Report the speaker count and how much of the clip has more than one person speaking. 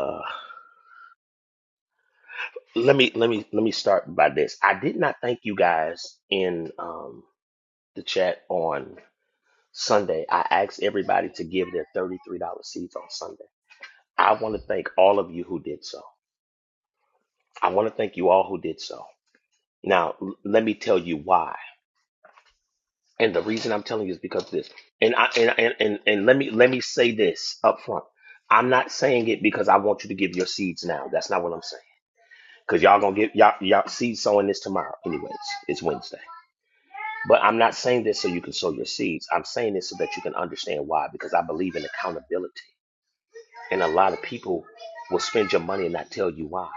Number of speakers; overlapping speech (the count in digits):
1, no overlap